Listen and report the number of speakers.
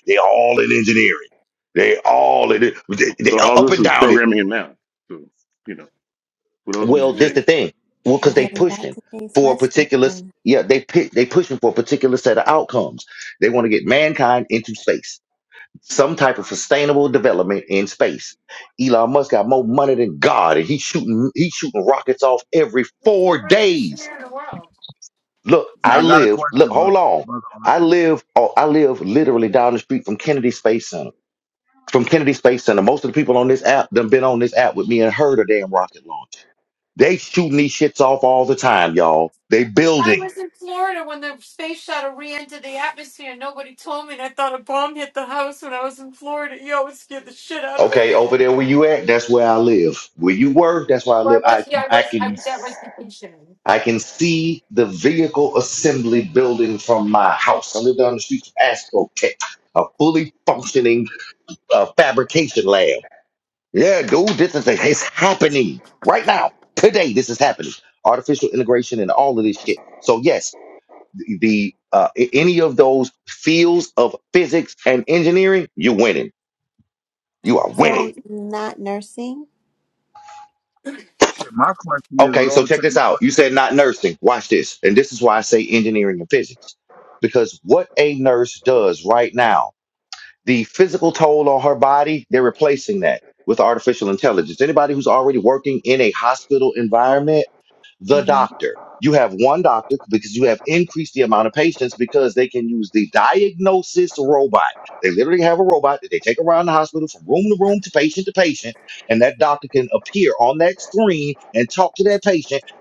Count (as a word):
five